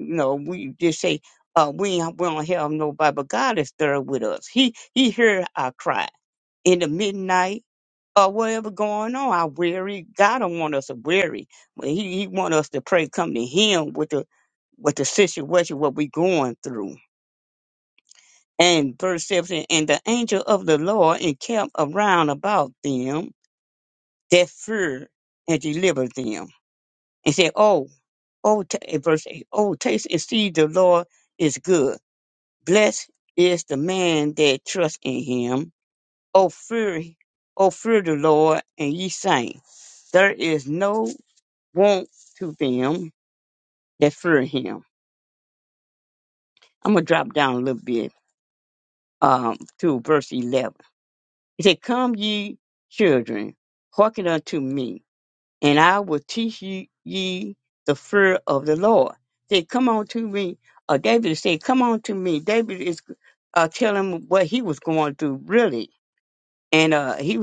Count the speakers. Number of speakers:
one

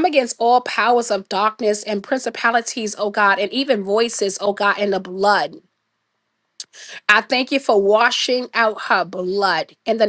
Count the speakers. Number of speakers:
one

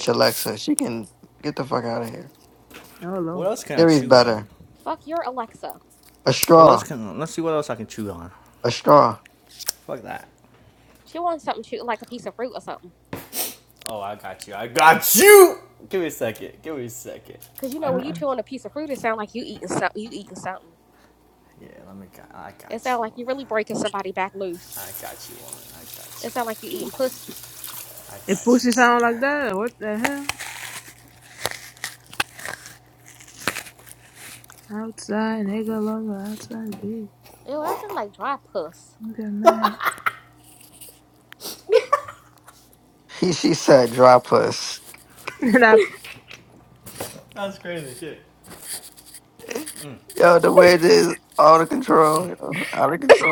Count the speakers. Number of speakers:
four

